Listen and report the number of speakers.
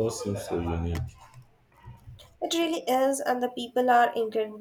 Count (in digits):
2